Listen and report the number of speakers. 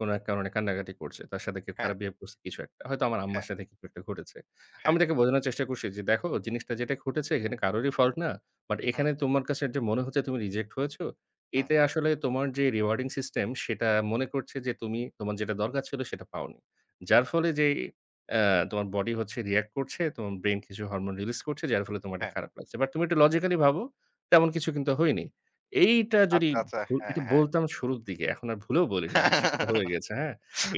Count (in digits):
2